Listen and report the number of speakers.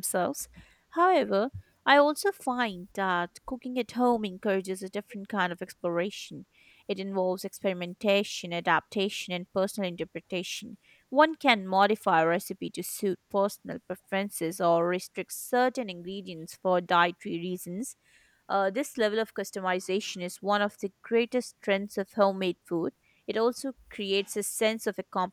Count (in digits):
1